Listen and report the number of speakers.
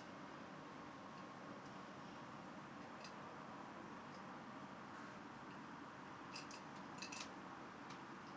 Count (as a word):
zero